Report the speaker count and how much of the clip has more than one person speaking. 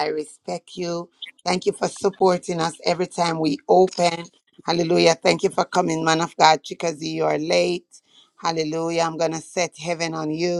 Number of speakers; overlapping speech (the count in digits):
1, no overlap